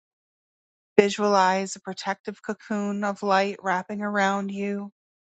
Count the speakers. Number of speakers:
one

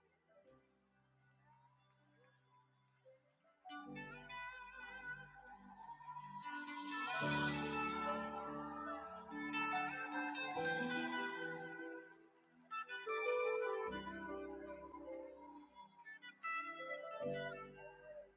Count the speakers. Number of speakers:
zero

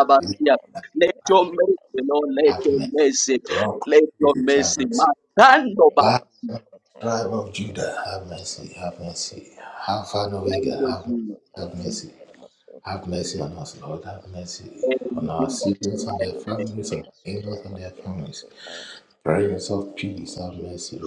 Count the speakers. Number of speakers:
three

